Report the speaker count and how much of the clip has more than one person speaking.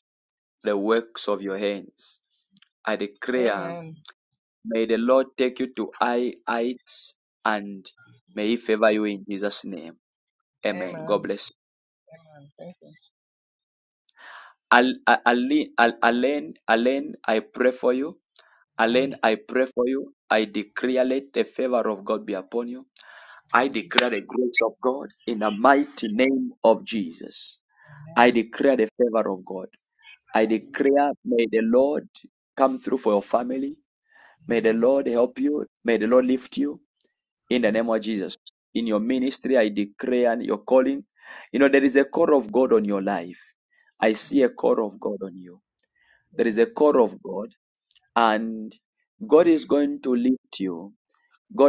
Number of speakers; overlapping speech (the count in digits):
2, about 2%